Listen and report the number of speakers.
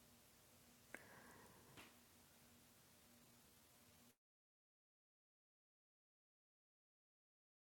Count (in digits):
0